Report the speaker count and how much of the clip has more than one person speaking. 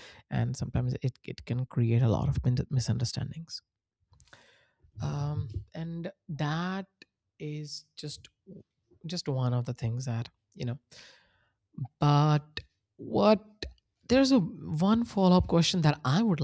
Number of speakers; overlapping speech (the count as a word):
one, no overlap